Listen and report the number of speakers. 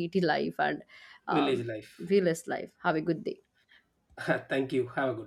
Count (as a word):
two